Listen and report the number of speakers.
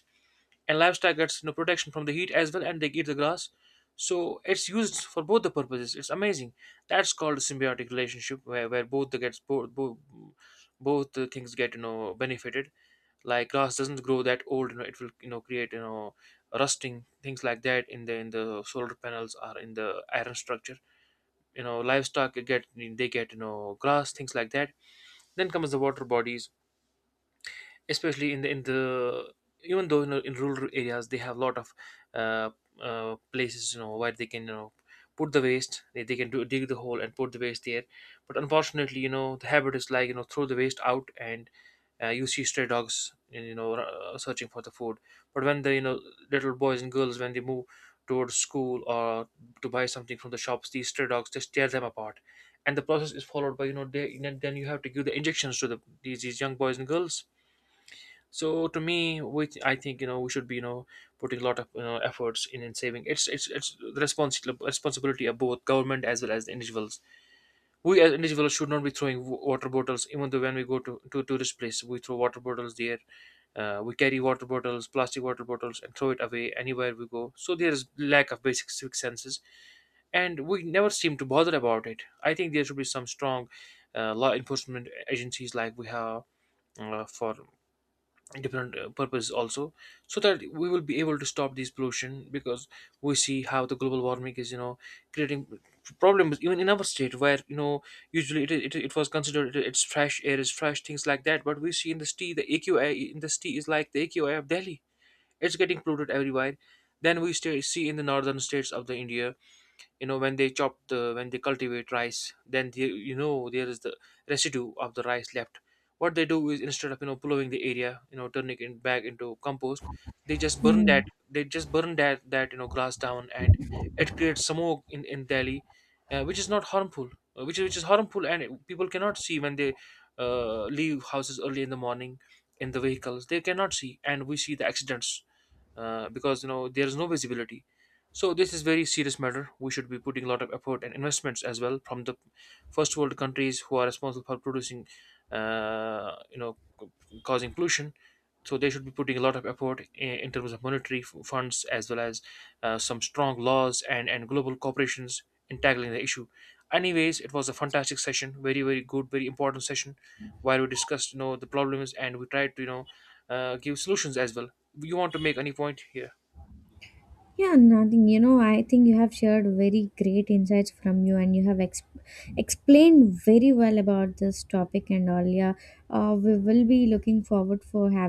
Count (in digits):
2